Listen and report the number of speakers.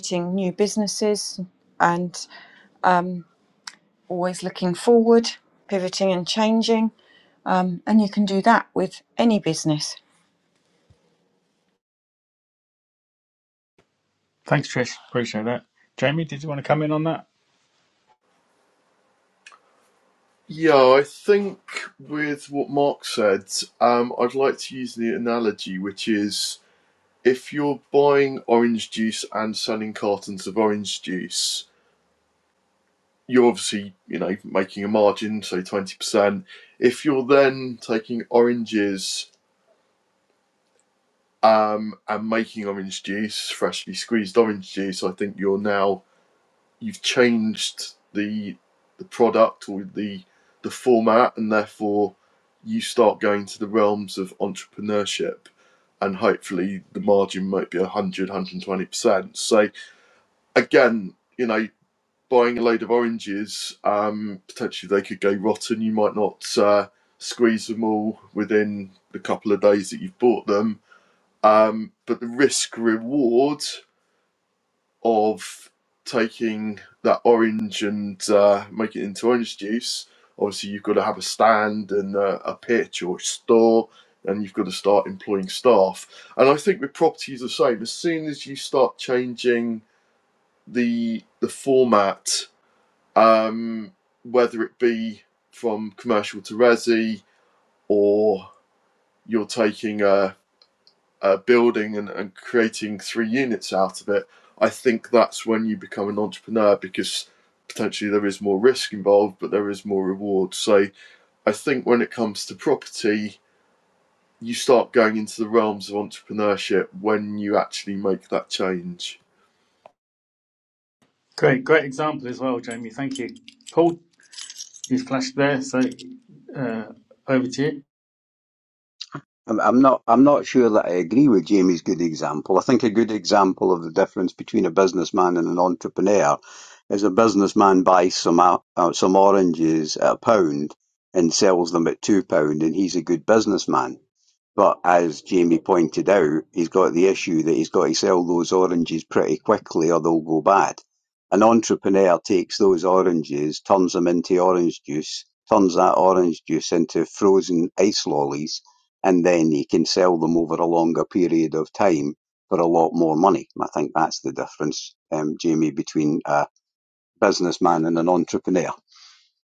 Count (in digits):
4